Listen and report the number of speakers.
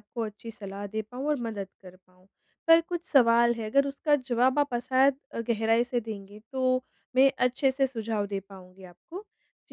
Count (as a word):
one